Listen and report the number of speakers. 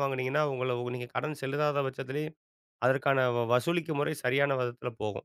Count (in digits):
1